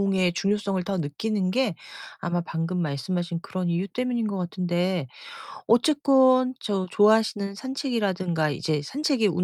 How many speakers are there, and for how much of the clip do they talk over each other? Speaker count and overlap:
1, no overlap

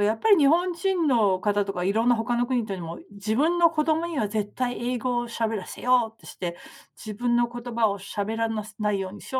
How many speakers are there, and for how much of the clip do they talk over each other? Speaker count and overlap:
1, no overlap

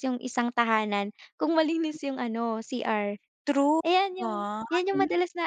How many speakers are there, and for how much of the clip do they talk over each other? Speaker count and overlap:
2, about 12%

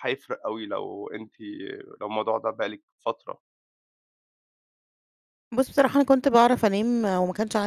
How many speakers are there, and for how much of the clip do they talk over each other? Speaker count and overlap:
2, no overlap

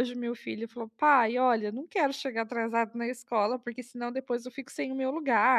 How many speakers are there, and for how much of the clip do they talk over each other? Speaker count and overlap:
1, no overlap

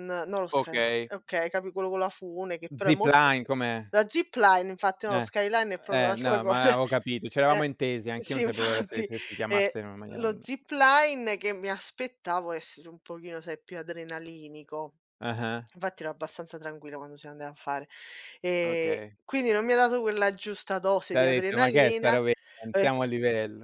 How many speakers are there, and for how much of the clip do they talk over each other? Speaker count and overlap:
2, about 23%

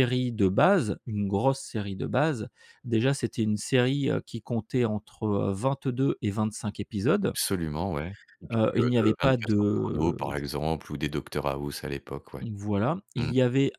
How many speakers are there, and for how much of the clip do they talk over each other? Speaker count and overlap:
2, about 14%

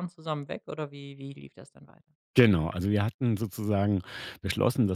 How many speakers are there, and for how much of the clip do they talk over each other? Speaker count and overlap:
2, no overlap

